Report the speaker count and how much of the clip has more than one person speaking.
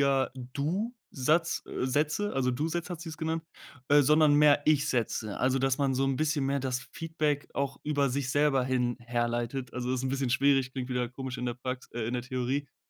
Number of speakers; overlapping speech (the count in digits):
1, no overlap